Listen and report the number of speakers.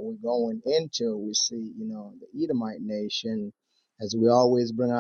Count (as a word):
one